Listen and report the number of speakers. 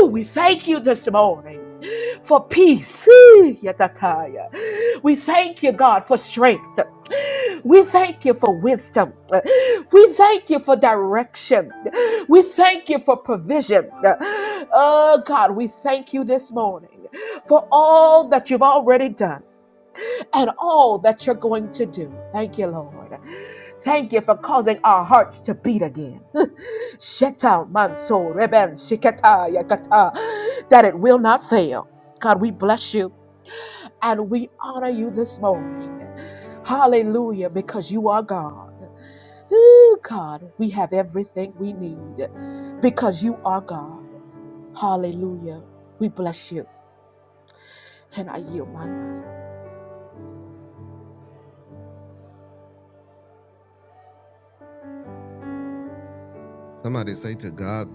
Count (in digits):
2